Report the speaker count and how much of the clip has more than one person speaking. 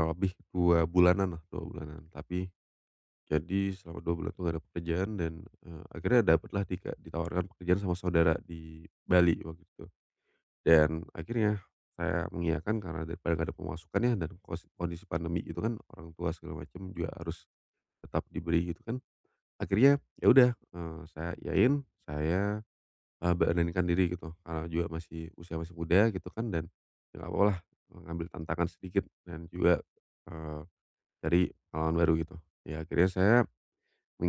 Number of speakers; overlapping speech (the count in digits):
1, no overlap